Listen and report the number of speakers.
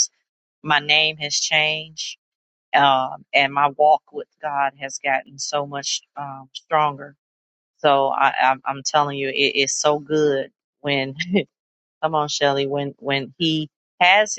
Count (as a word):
one